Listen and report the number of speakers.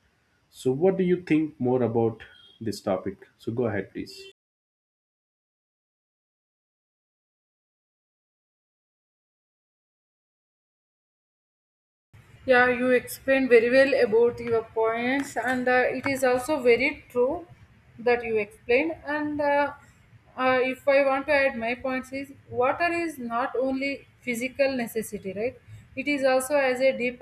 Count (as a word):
two